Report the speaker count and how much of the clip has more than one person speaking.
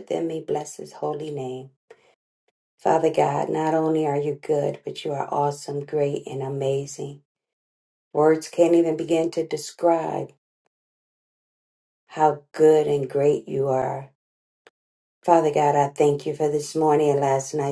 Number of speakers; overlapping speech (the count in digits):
1, no overlap